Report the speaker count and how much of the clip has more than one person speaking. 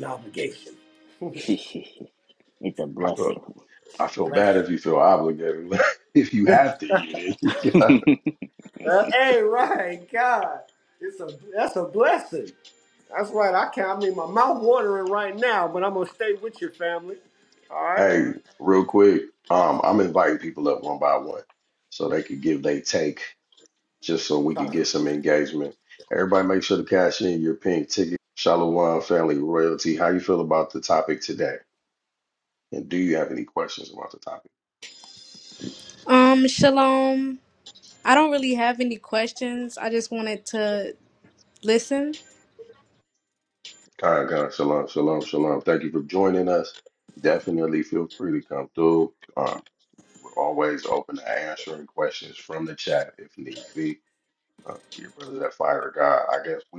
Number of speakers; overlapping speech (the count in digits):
4, about 2%